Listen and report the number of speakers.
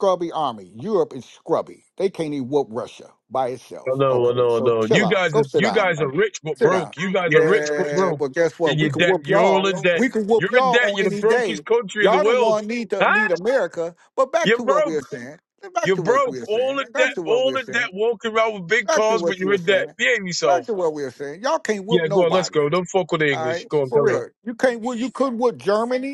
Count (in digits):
2